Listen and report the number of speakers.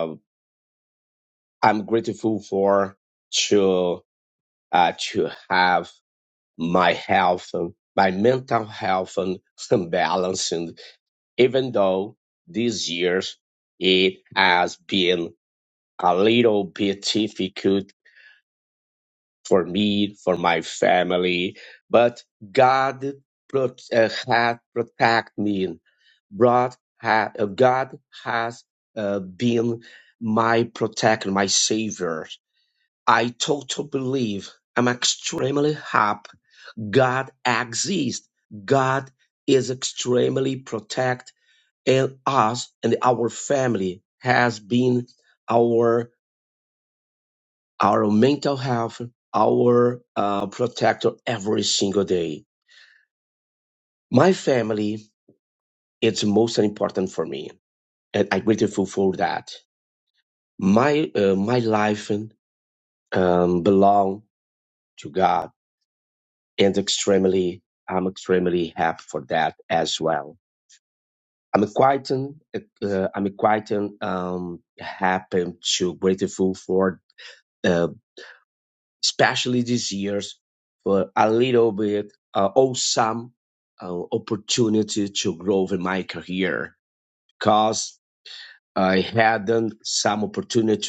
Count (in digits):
1